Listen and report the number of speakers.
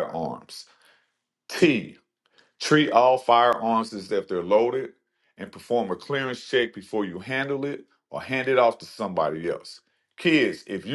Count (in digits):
1